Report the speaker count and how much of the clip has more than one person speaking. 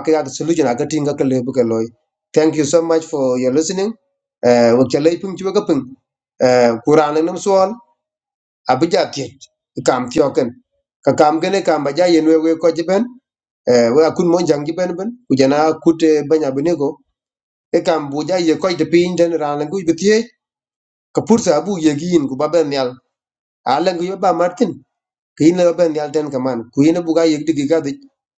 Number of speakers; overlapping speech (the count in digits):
1, no overlap